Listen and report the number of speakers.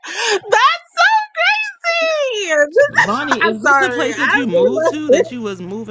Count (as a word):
two